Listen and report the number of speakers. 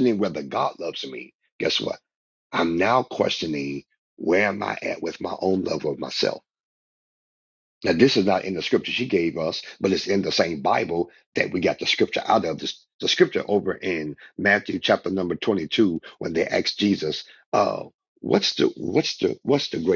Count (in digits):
1